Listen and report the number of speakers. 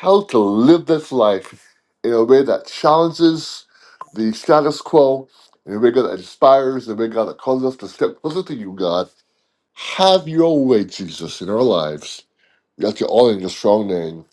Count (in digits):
1